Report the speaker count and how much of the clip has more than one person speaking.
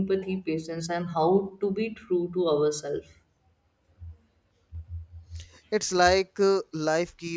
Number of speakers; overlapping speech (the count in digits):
2, no overlap